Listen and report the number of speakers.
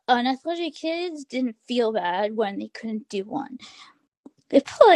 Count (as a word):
one